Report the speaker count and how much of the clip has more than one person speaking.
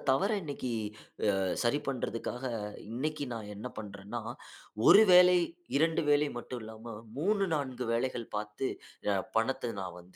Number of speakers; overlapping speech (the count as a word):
one, no overlap